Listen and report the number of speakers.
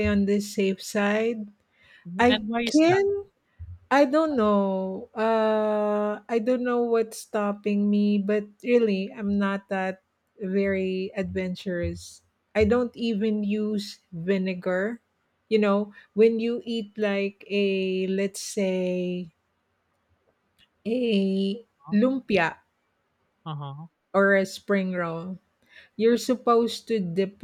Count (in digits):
2